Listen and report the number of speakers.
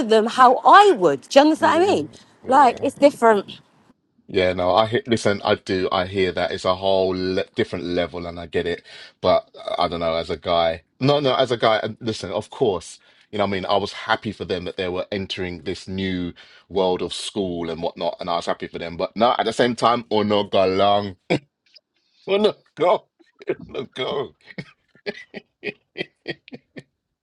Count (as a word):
two